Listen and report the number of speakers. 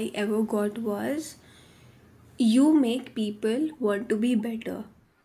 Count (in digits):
1